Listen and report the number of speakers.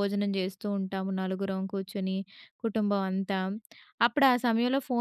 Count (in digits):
1